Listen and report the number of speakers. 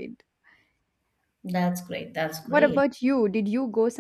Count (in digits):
2